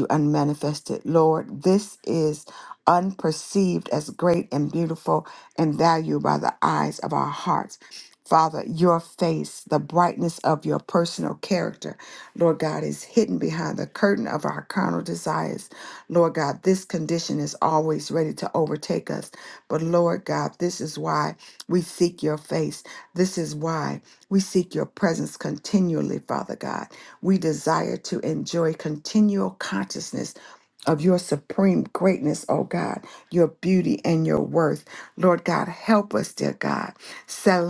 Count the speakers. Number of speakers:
1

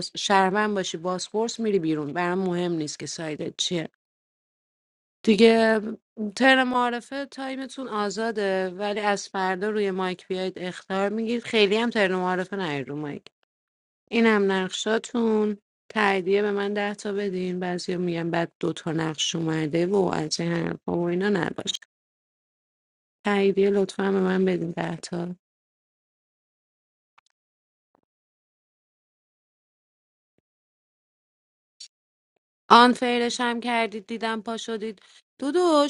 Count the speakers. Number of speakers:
1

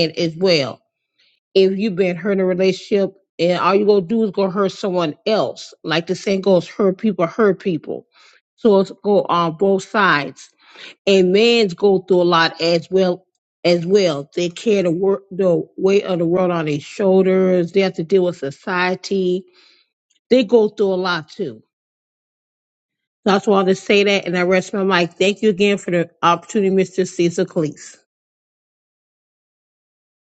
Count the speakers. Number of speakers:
1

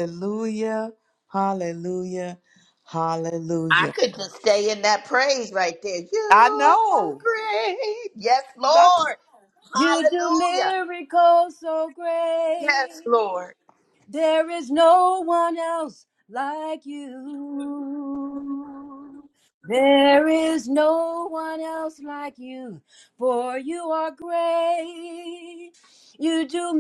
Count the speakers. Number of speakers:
3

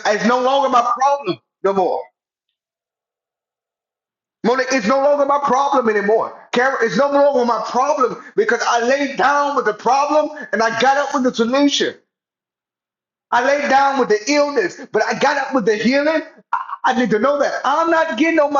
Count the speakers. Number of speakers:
1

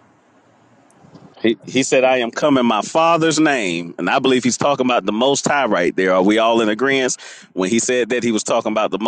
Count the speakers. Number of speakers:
1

